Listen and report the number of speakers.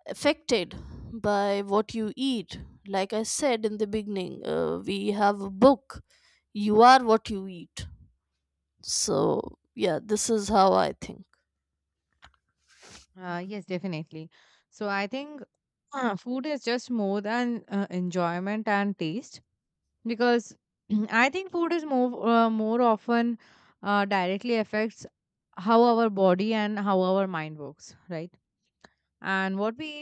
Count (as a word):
two